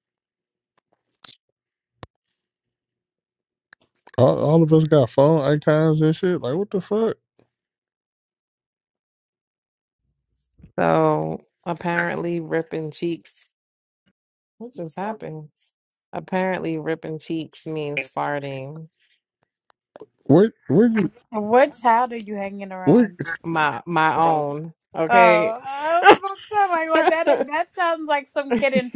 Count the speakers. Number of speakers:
3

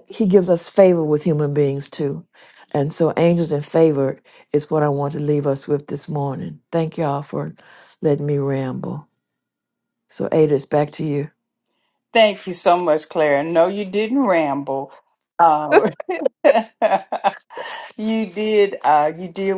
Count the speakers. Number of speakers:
2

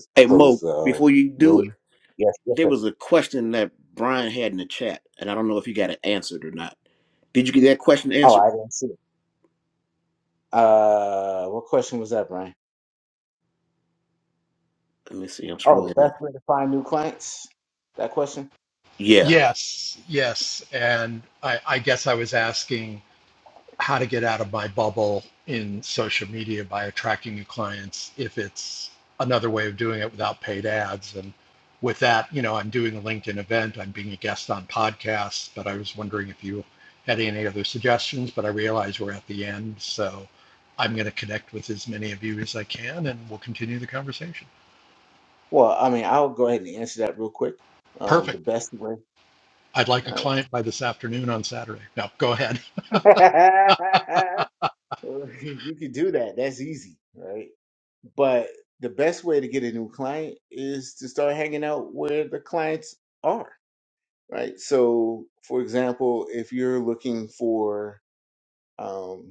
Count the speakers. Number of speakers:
3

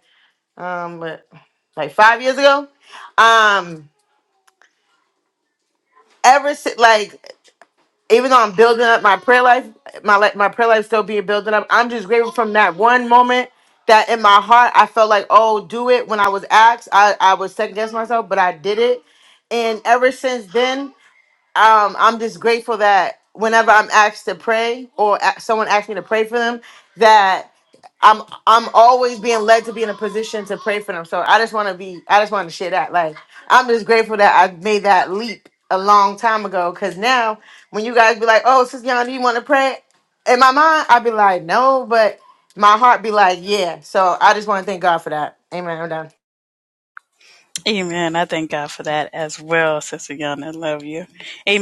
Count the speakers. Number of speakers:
2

